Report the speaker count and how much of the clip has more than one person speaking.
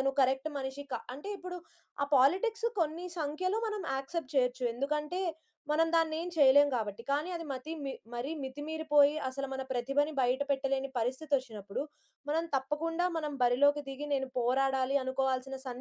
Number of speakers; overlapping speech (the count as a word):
one, no overlap